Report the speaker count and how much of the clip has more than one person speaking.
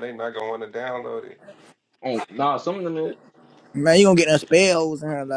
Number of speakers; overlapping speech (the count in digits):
3, no overlap